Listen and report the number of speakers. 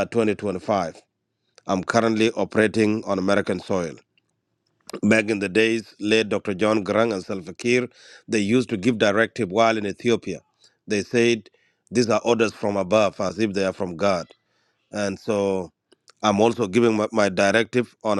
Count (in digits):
1